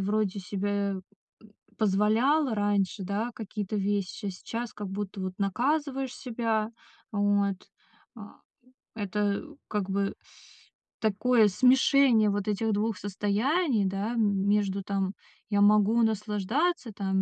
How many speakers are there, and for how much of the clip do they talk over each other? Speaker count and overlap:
1, no overlap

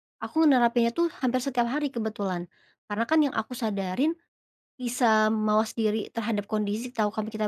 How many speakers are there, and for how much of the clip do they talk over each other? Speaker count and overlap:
1, no overlap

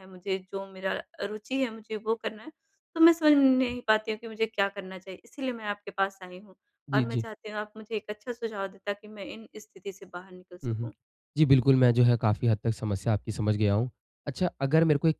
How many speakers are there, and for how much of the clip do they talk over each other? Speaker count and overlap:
2, about 4%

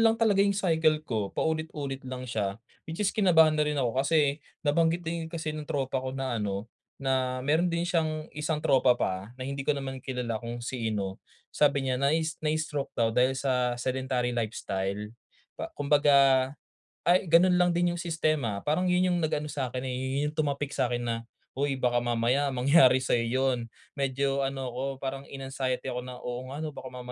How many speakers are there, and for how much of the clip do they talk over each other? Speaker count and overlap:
1, no overlap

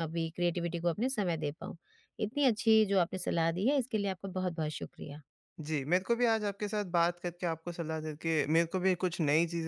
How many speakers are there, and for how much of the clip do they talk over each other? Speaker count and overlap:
2, no overlap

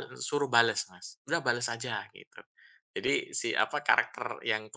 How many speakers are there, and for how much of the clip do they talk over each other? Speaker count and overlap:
1, no overlap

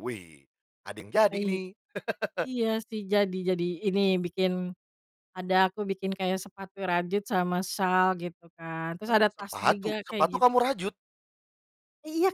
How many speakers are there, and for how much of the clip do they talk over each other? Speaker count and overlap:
2, about 13%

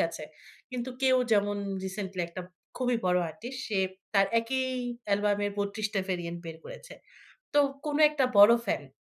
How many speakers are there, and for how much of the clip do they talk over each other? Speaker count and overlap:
1, no overlap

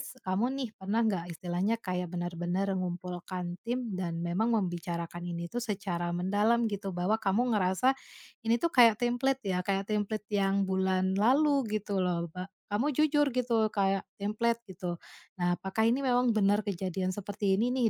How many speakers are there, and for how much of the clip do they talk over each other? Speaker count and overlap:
1, no overlap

